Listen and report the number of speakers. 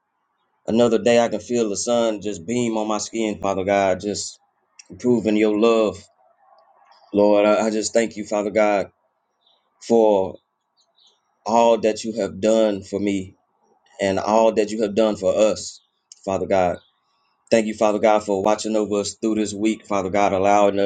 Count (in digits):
1